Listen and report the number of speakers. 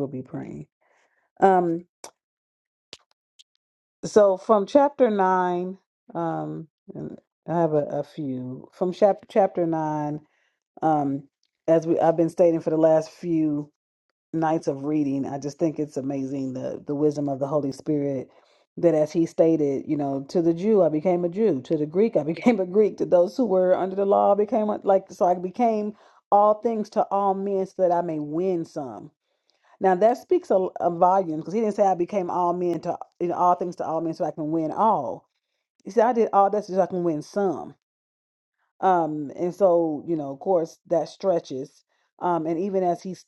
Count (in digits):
1